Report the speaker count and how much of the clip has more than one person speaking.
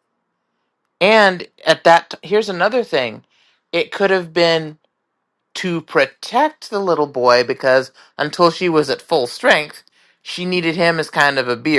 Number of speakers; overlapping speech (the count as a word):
one, no overlap